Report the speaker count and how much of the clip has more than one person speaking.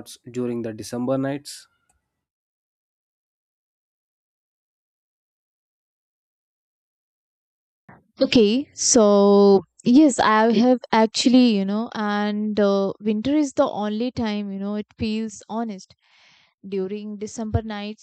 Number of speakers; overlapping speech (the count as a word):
two, no overlap